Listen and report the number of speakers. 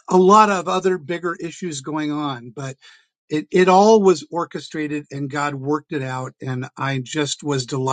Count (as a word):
one